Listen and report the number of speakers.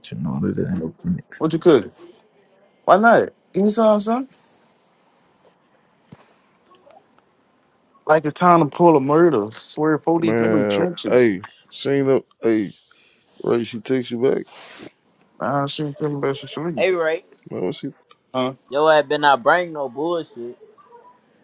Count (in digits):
4